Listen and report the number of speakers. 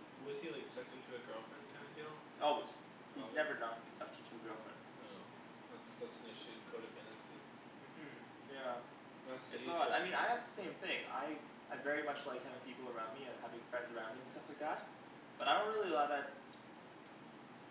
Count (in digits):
2